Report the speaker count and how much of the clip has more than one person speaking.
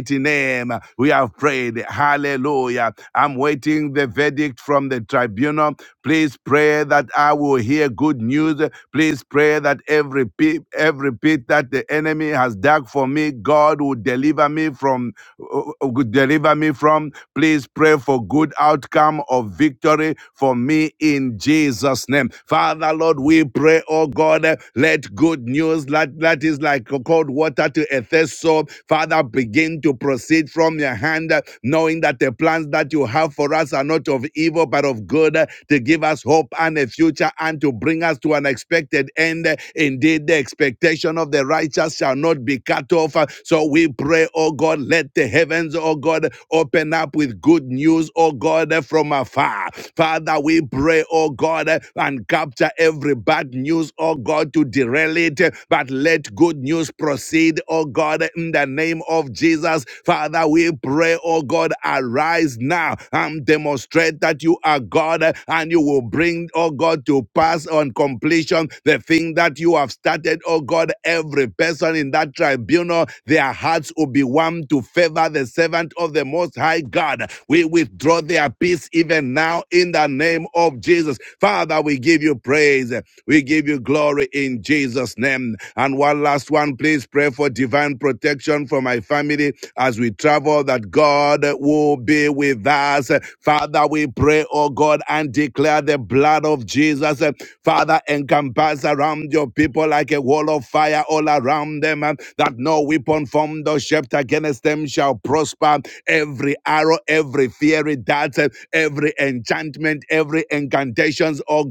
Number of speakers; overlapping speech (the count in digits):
1, no overlap